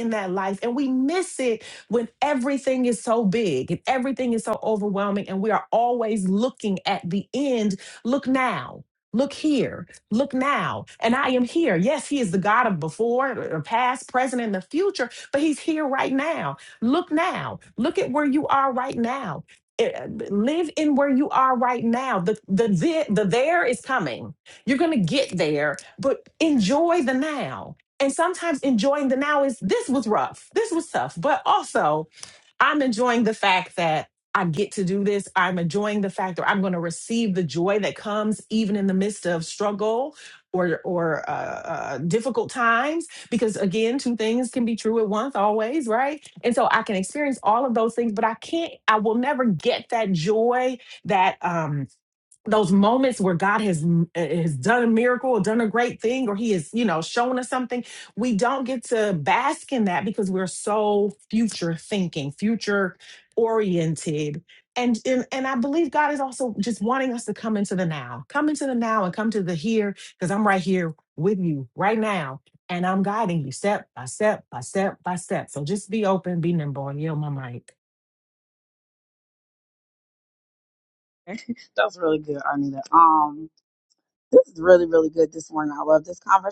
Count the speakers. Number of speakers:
2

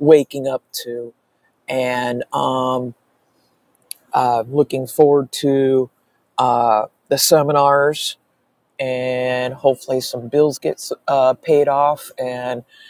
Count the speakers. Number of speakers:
1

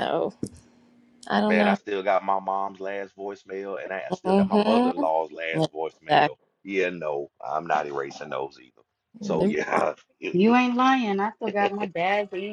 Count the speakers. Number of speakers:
3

